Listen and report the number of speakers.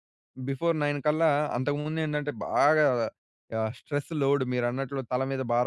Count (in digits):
1